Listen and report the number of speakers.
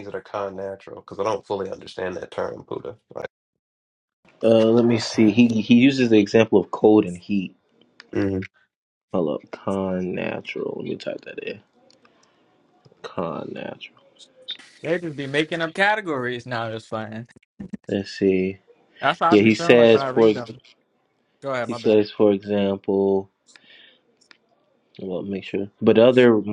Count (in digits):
3